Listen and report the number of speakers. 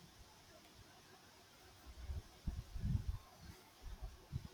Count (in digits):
0